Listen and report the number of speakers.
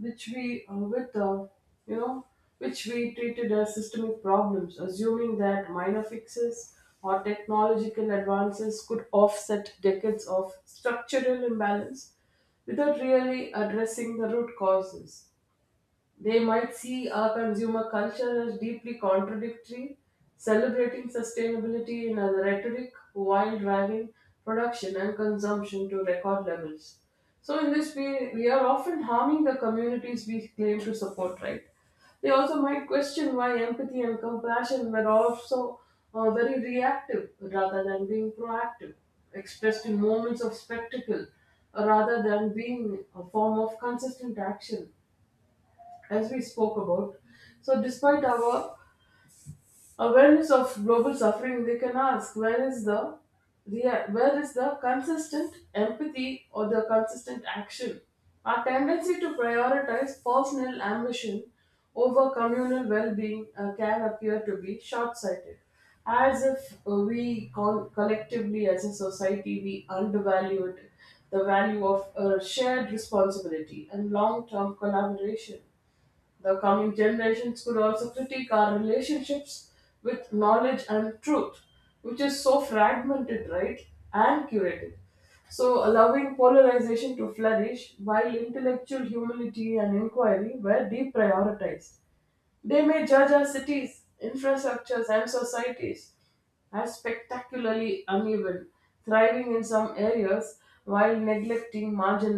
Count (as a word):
one